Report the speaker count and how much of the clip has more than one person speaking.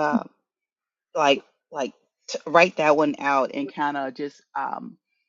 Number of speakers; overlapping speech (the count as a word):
one, no overlap